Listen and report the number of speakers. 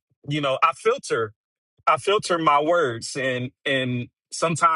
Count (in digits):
1